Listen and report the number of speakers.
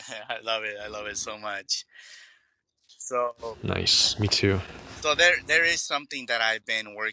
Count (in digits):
2